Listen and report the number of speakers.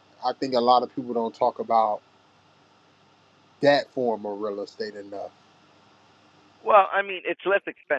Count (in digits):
2